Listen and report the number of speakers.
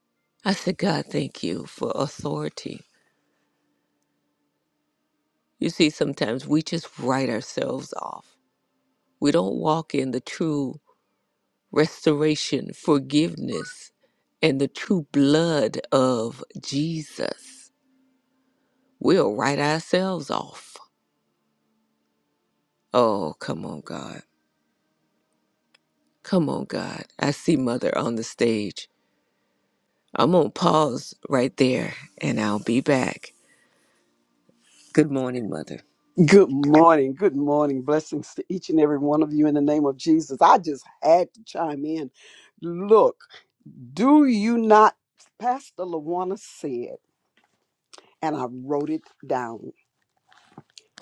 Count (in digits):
2